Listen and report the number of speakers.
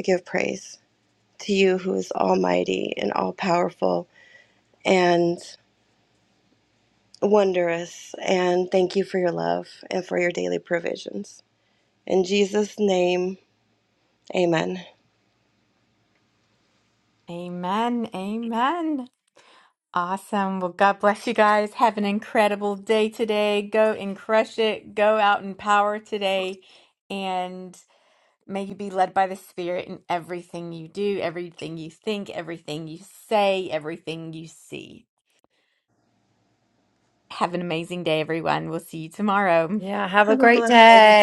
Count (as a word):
three